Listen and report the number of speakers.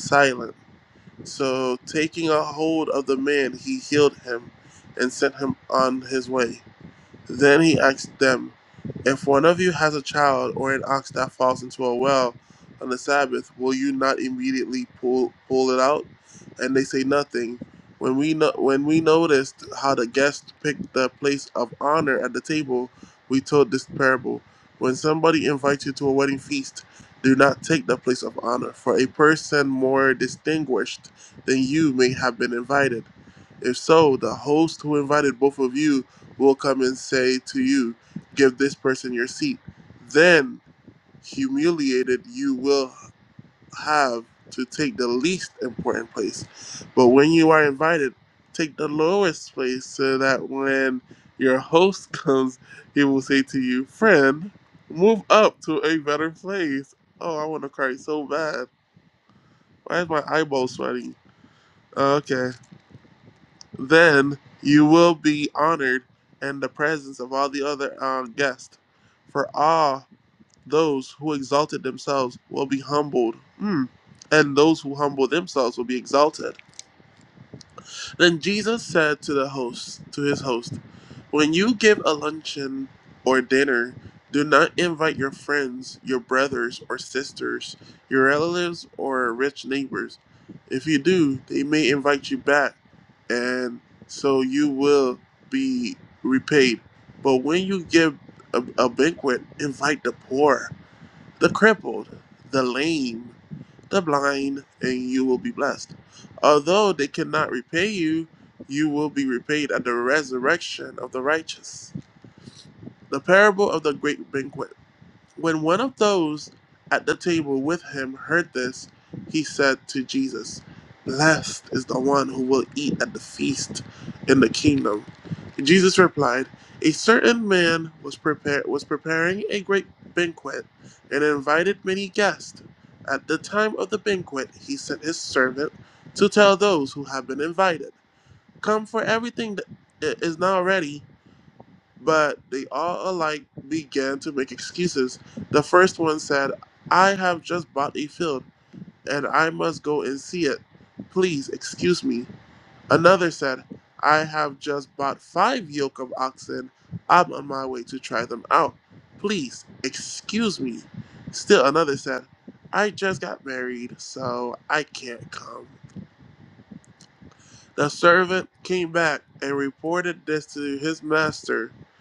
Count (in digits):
1